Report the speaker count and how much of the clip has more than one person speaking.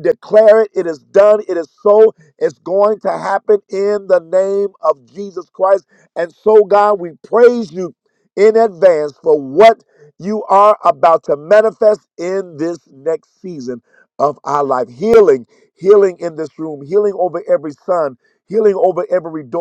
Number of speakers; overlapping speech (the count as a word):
one, no overlap